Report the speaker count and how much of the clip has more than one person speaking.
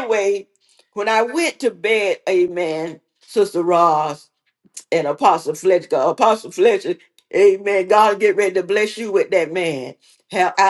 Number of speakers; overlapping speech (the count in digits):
1, no overlap